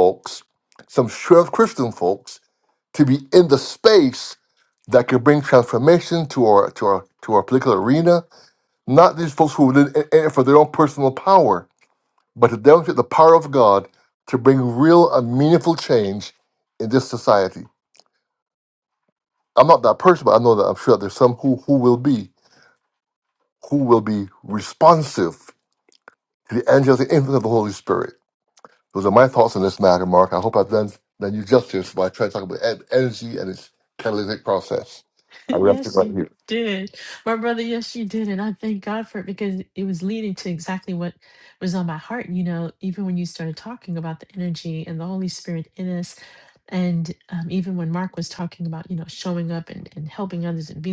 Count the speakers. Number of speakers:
2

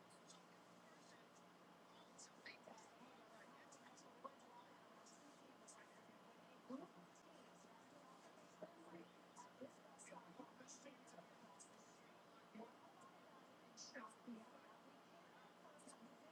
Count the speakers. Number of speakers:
0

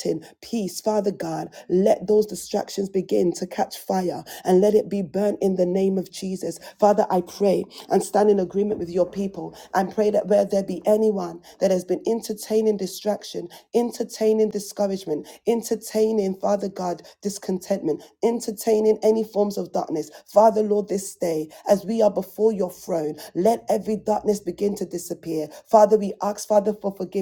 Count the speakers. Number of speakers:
1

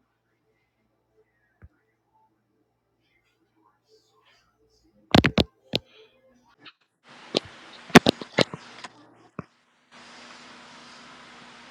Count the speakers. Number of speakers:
0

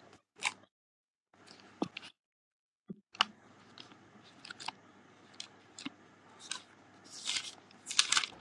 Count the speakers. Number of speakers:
0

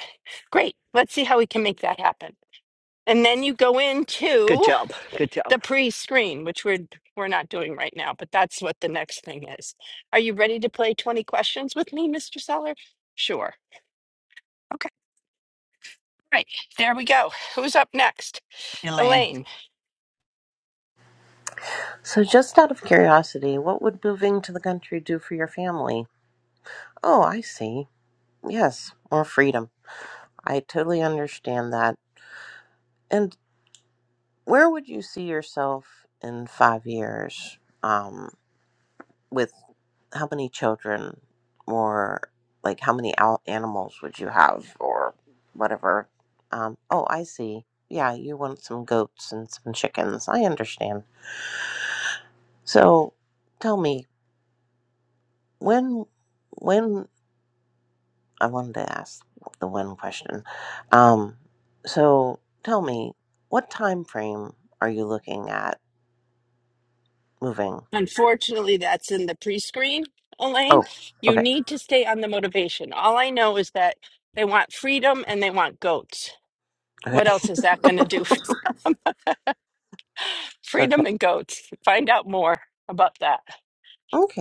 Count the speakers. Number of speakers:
3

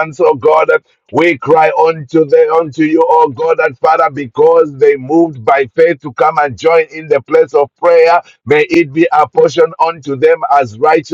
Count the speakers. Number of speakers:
1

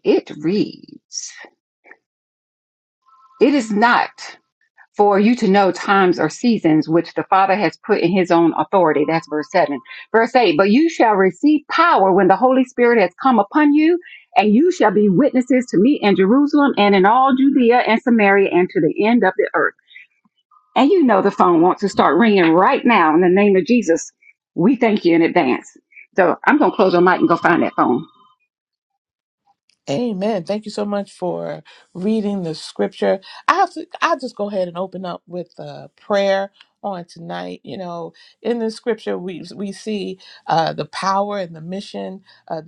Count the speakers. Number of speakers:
2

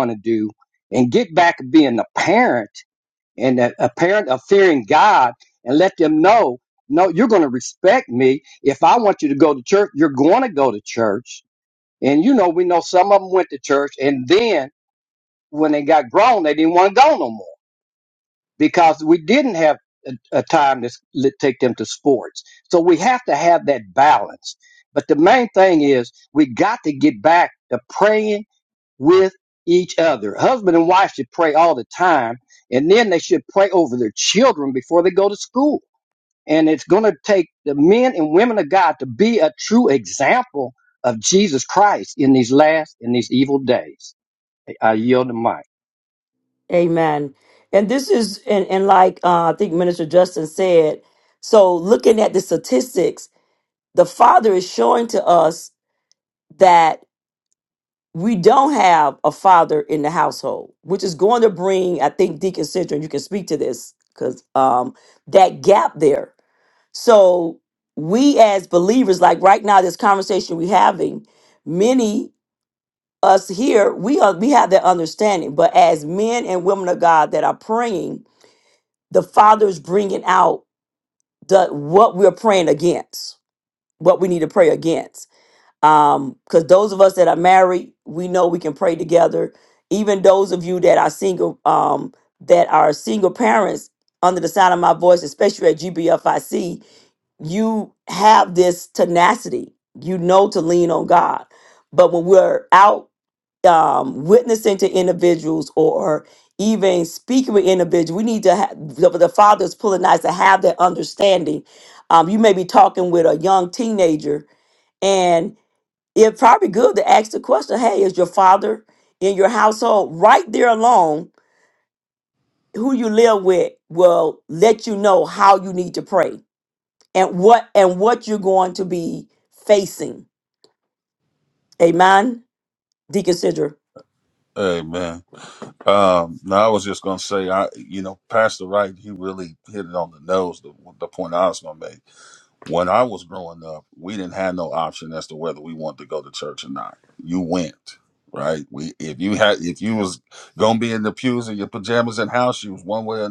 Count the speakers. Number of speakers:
3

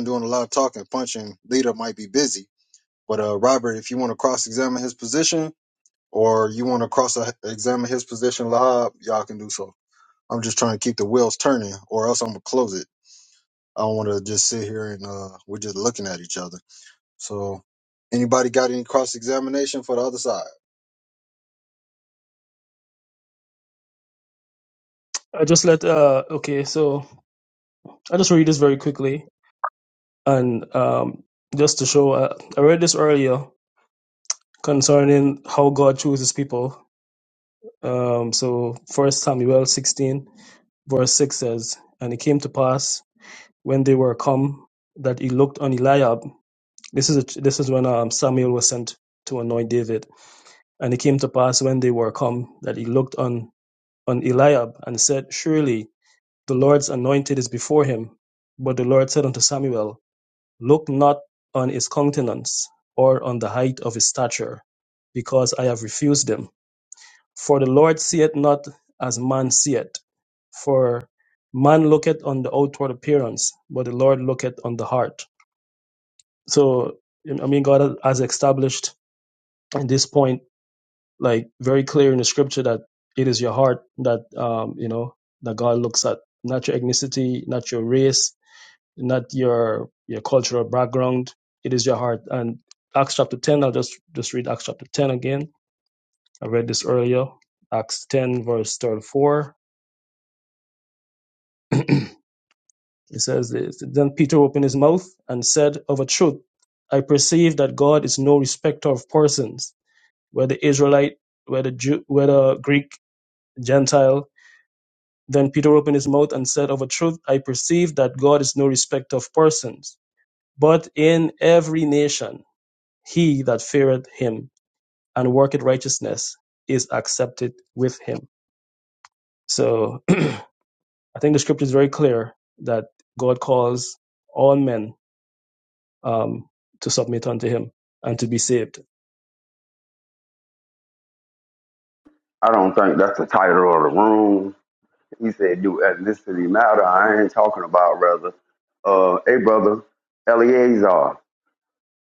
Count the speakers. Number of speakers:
3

